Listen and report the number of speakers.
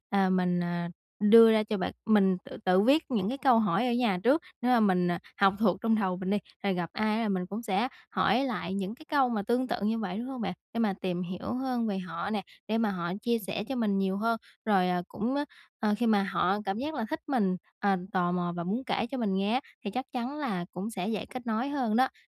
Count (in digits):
1